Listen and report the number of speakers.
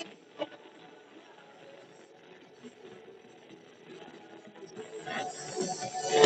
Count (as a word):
zero